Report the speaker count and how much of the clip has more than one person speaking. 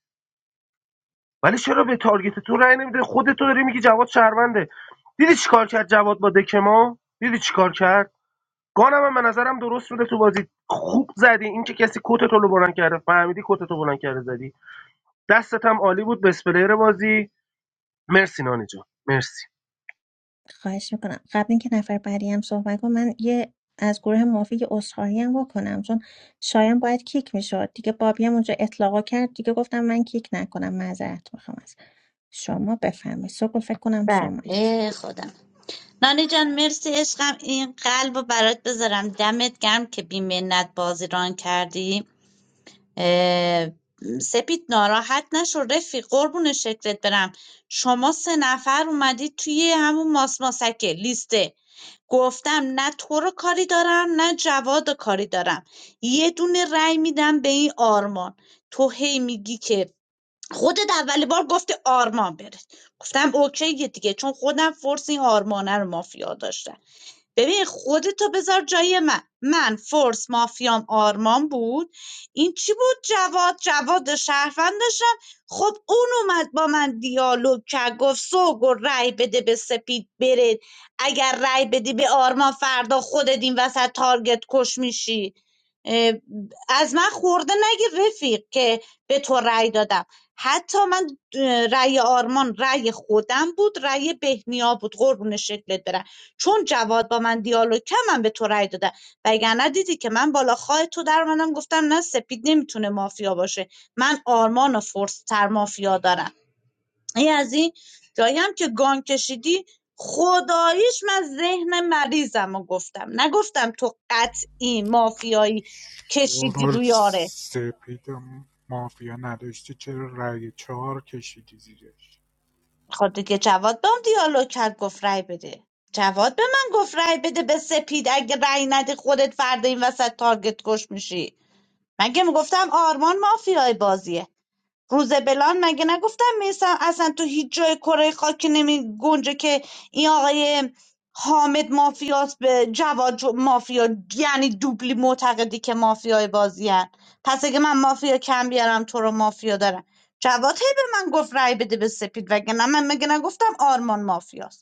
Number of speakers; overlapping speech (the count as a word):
four, about 1%